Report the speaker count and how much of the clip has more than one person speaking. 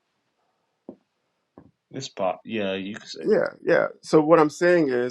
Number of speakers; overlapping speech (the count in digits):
2, about 1%